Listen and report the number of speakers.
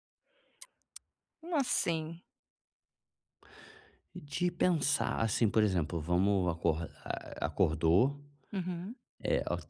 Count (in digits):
2